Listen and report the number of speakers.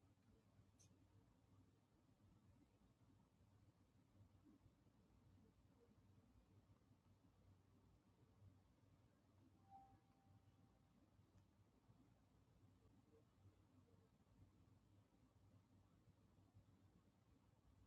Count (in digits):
0